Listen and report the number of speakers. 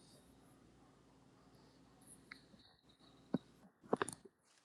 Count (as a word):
zero